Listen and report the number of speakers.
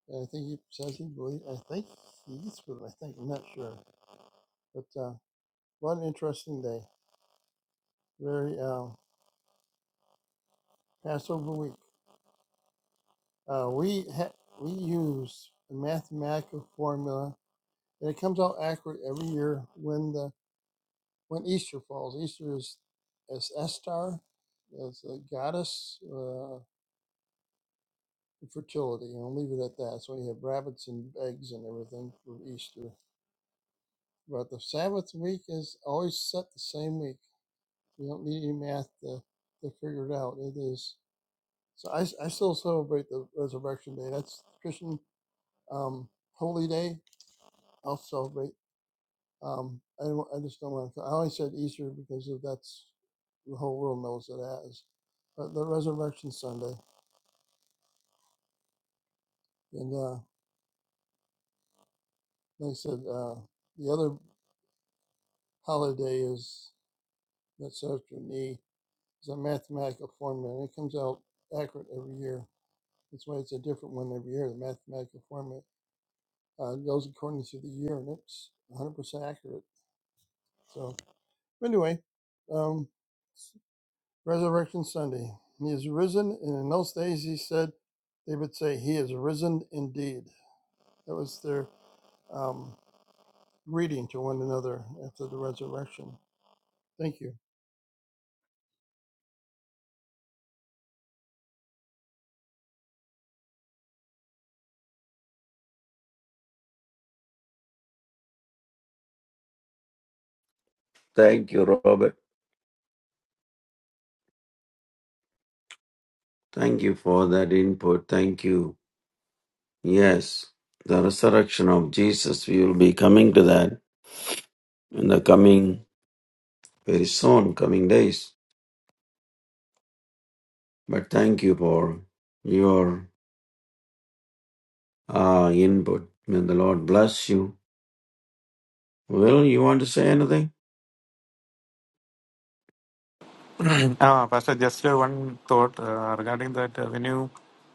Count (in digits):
3